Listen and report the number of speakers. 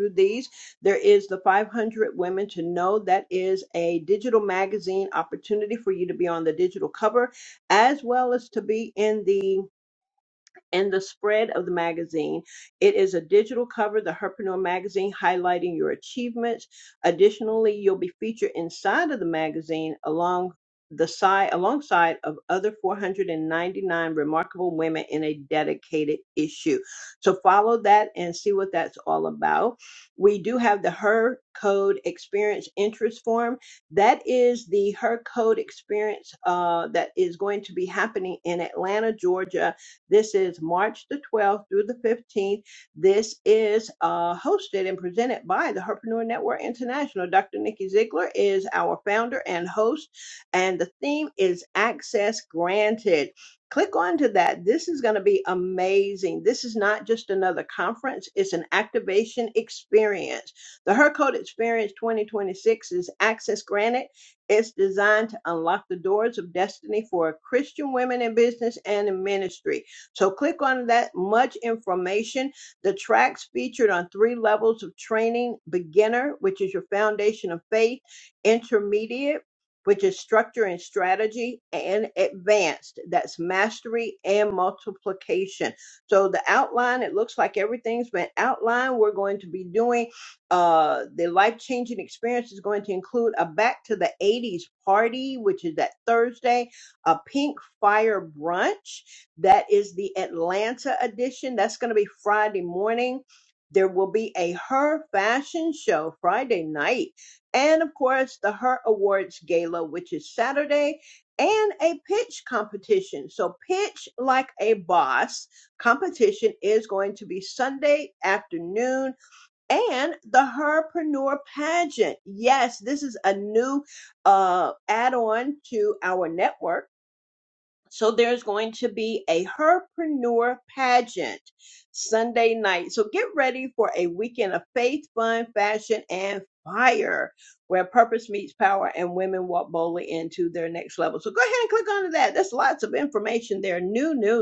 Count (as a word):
one